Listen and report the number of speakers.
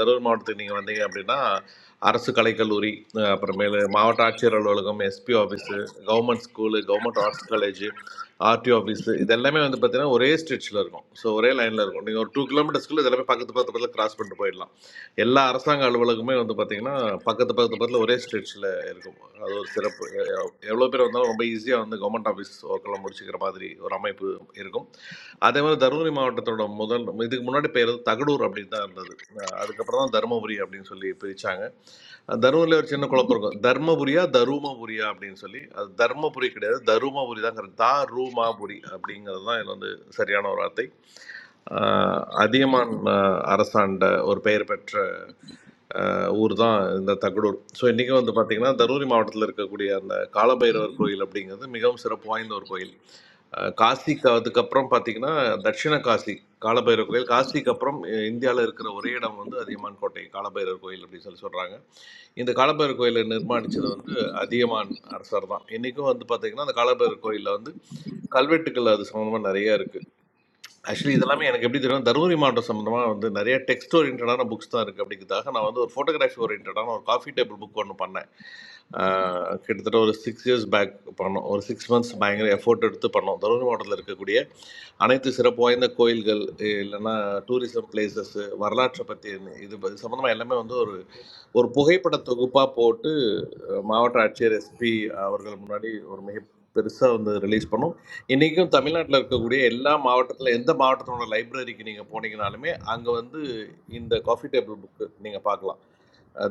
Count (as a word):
one